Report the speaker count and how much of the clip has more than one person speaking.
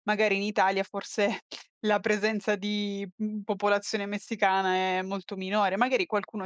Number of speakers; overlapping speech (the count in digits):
1, no overlap